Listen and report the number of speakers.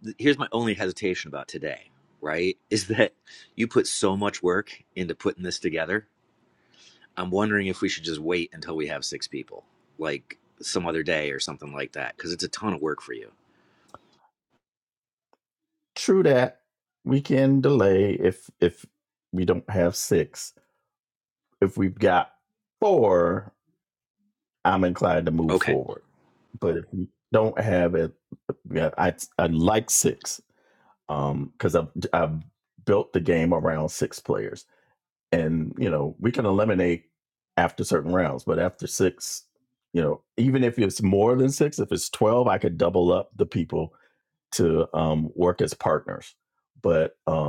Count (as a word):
two